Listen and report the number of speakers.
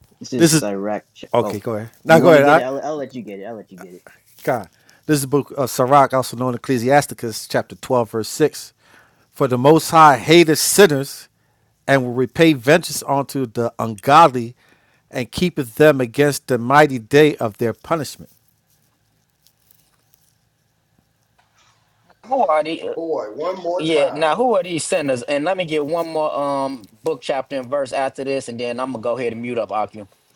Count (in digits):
4